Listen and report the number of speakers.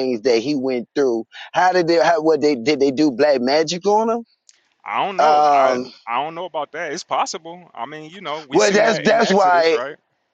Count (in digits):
2